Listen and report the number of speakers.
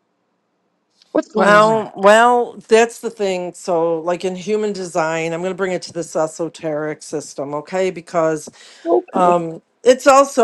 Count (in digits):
2